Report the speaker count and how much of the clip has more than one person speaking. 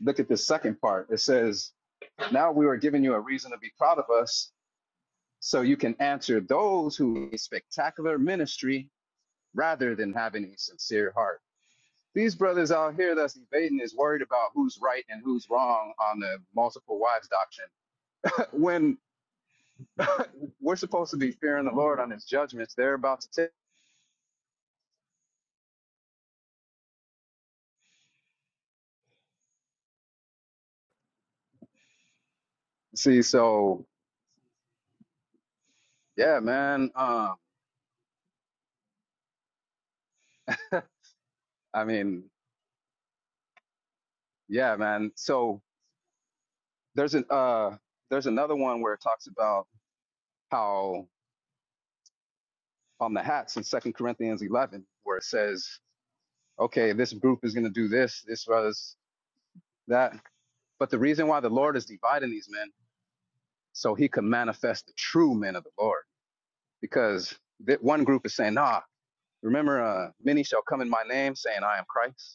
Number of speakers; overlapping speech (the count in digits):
1, no overlap